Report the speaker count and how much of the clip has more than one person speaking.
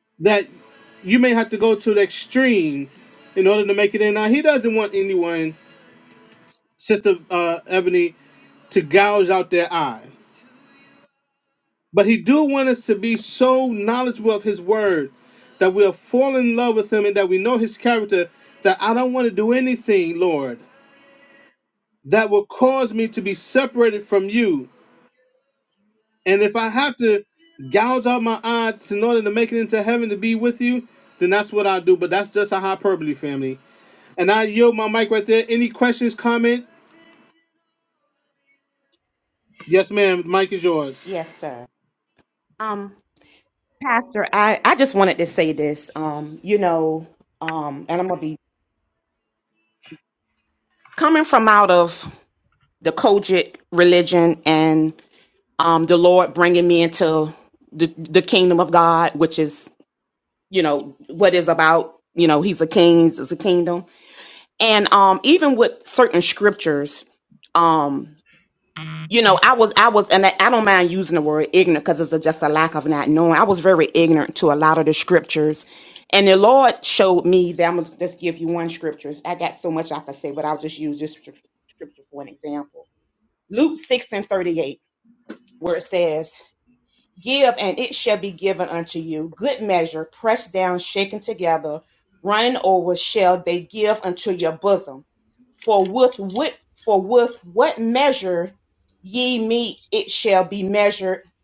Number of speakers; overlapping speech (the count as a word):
two, no overlap